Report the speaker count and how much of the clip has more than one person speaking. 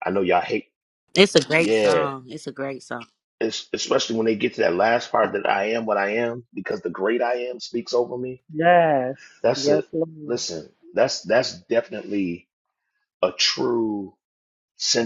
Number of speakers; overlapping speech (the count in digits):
3, about 6%